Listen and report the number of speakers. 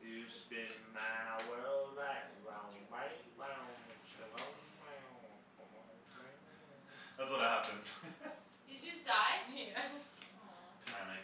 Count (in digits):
4